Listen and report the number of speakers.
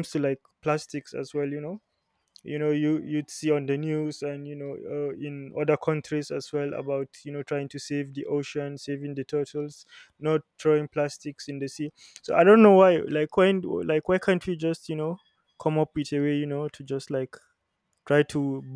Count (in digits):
1